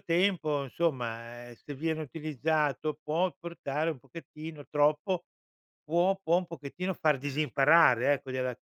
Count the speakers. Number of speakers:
one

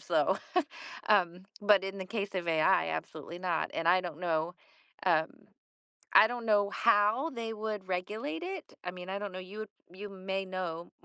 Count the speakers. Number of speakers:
one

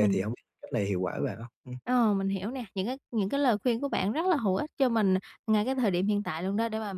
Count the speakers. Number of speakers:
two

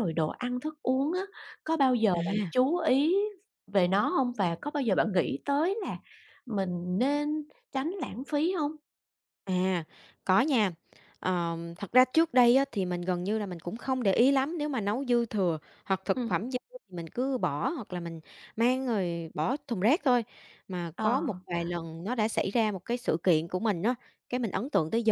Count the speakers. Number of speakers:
two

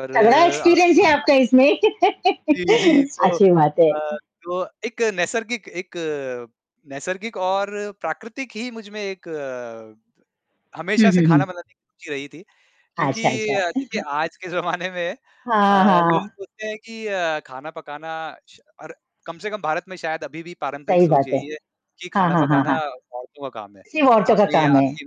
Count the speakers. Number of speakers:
two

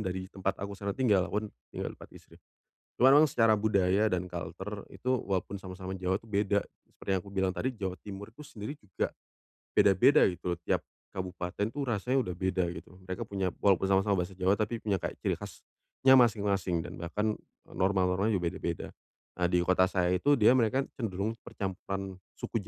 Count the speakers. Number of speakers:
one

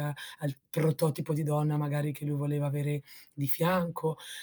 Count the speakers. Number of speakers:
one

